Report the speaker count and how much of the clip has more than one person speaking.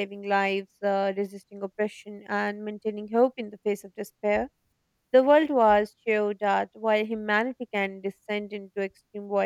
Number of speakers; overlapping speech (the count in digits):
1, no overlap